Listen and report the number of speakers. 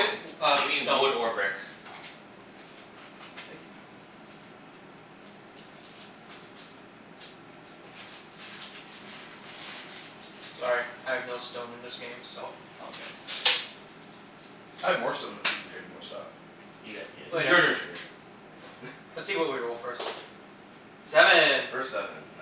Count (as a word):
three